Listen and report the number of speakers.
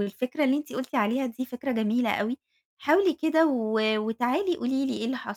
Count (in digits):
1